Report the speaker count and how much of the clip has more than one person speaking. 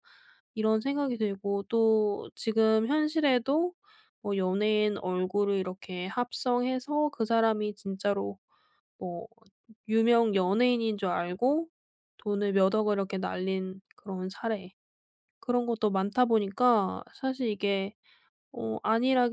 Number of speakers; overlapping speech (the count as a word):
one, no overlap